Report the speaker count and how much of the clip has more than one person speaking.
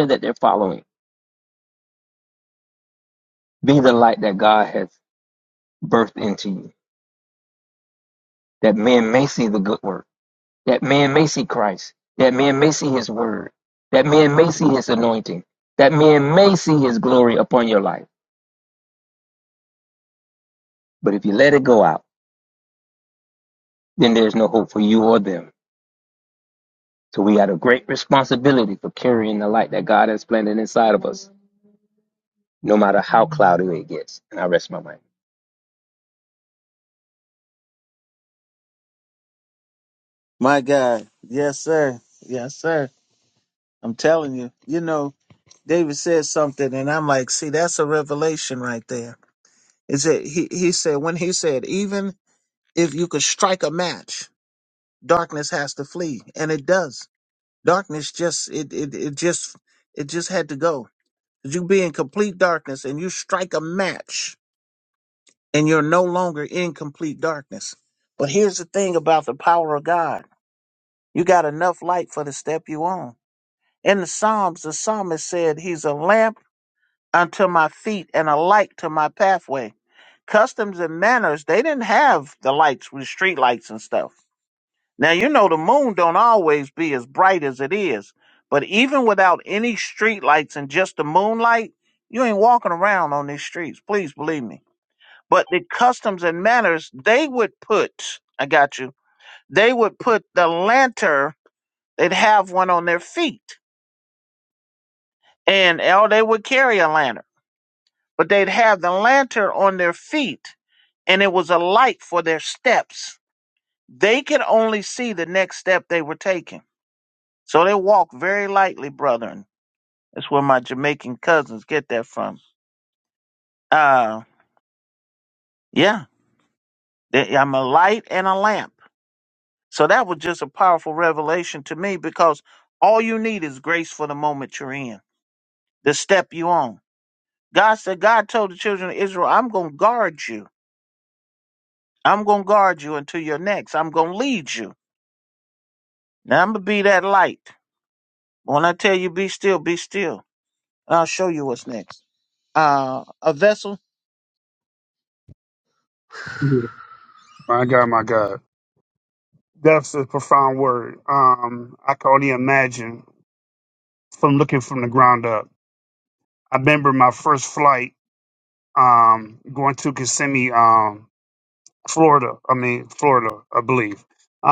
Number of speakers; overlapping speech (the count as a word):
three, no overlap